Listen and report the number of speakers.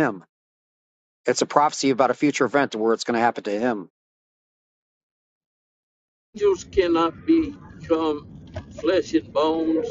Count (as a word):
two